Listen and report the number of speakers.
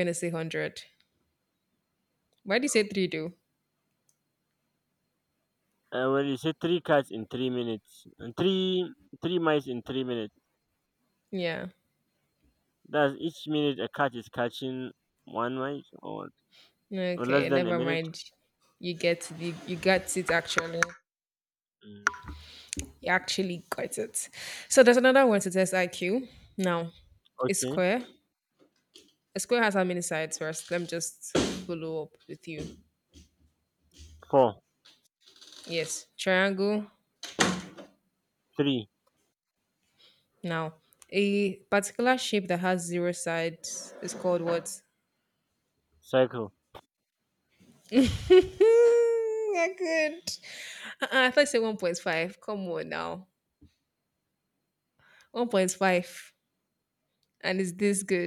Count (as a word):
two